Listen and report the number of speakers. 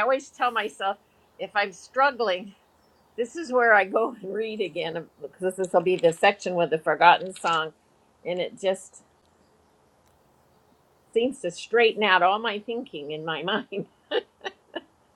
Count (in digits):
1